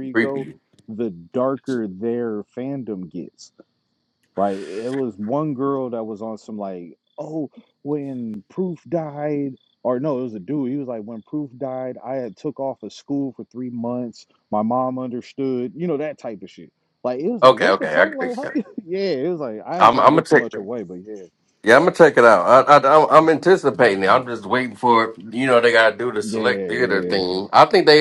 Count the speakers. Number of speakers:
2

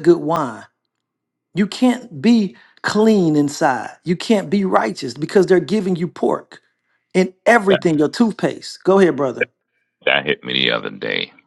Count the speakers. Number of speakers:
2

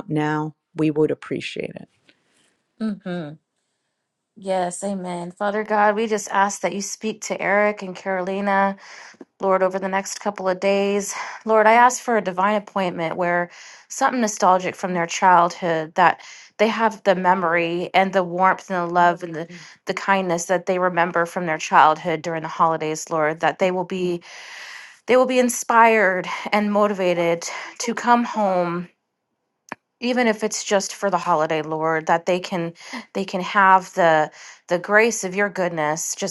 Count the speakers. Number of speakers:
2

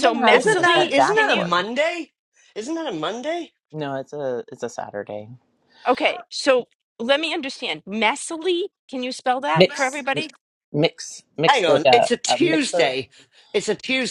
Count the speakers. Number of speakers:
3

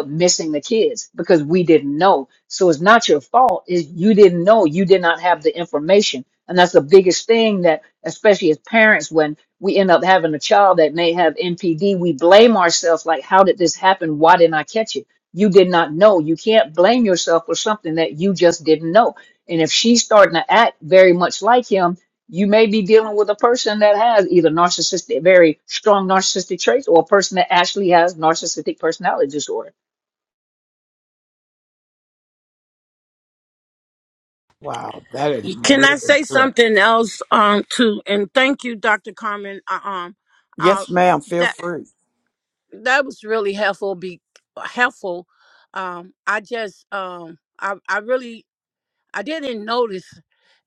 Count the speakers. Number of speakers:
3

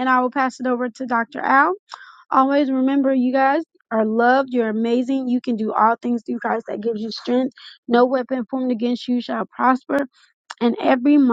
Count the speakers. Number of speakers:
1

